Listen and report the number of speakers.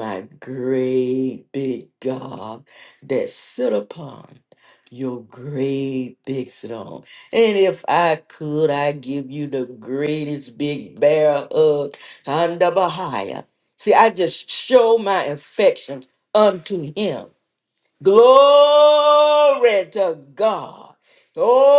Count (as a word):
one